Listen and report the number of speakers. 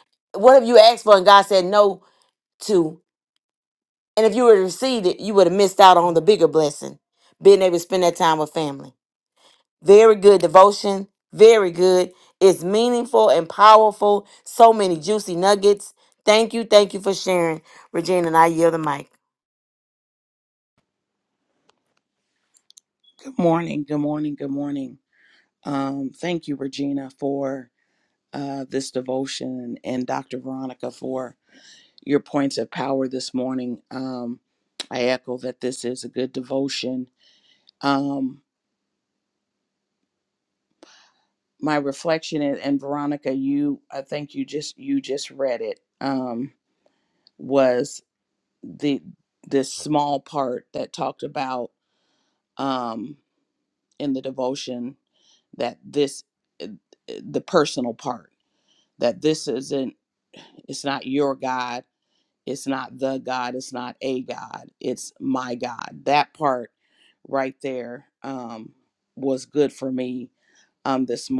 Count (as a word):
two